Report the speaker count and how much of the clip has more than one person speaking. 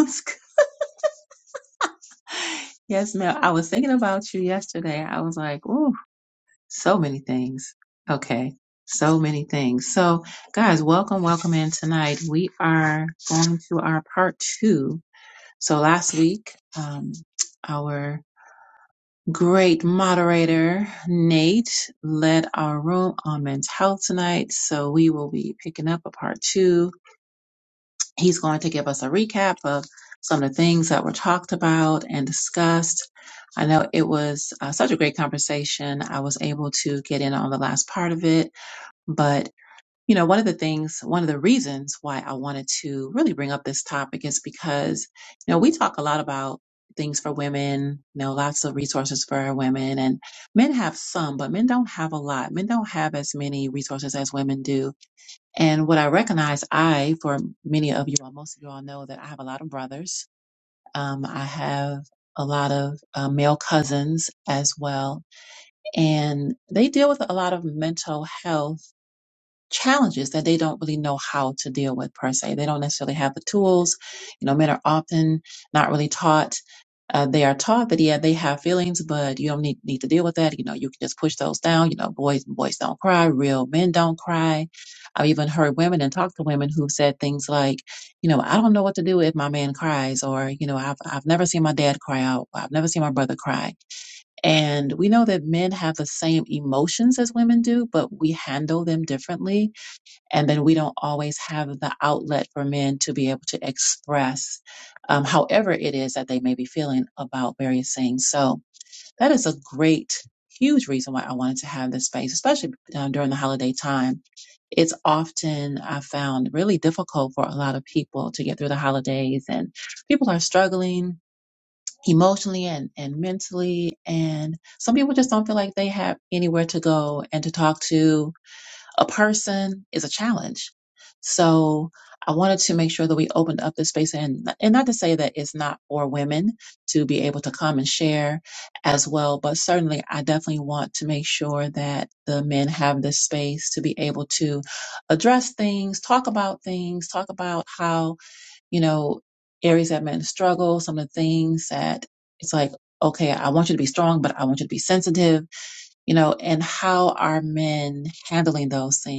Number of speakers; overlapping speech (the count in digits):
1, no overlap